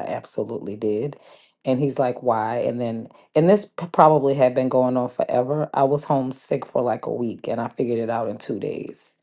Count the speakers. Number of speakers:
1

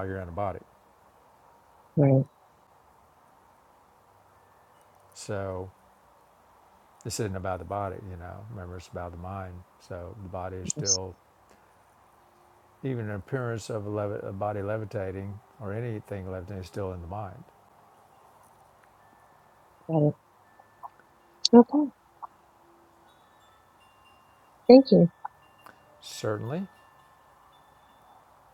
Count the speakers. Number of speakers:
2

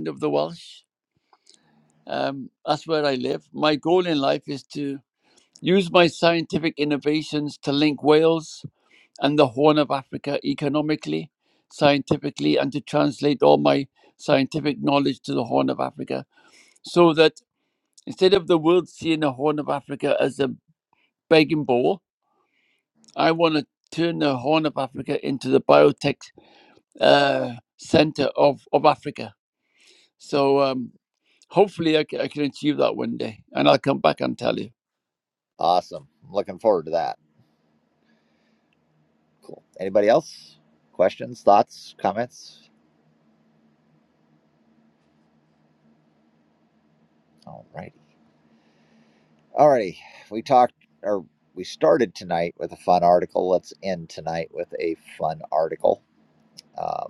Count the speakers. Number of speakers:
2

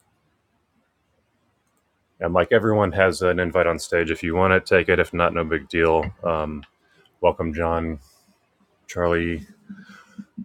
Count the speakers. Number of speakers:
1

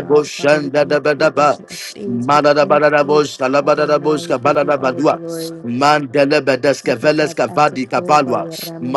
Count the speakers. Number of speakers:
2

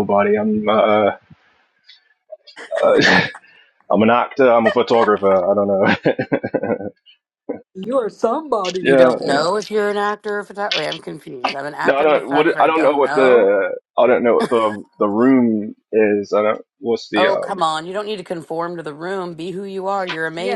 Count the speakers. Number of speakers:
3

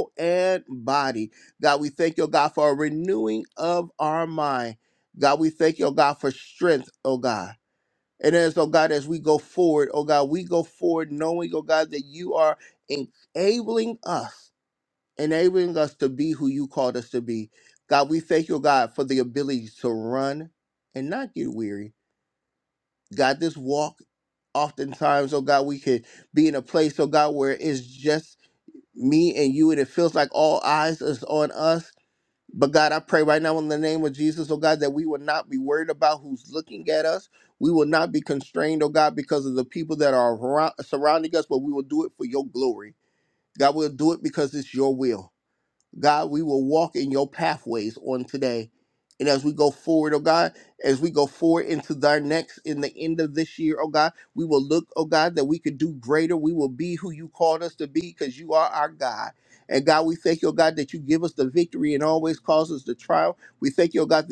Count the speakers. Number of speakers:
1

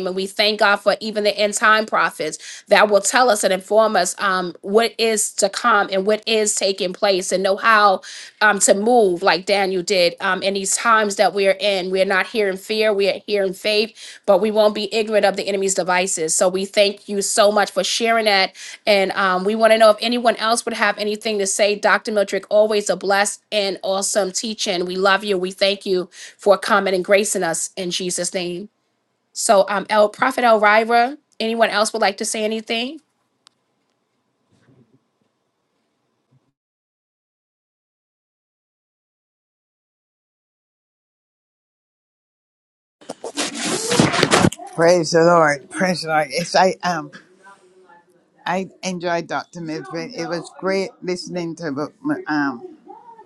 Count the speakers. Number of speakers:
2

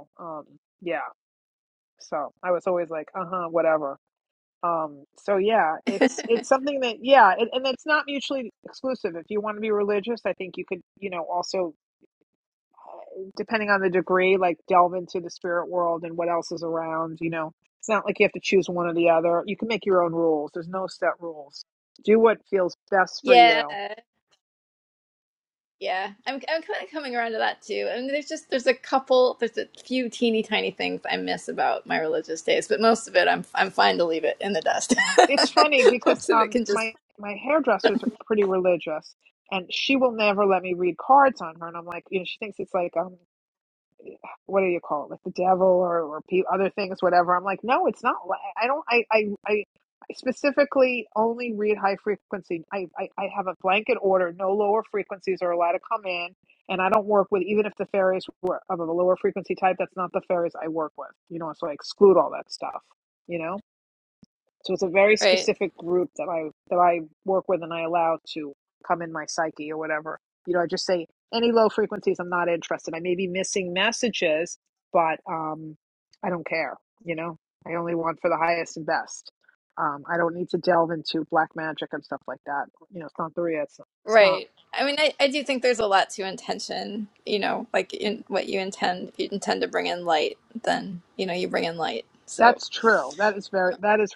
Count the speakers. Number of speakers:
2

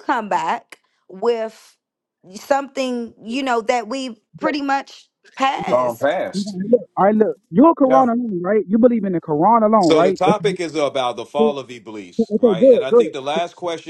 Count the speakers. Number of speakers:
3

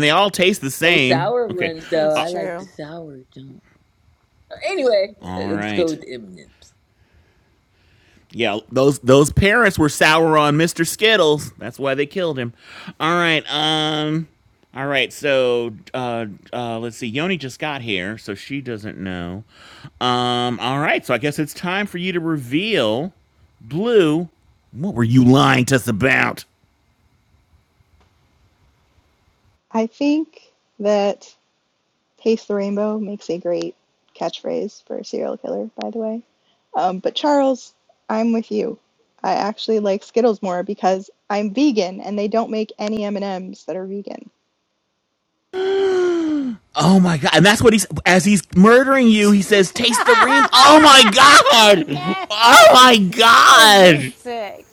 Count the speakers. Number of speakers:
4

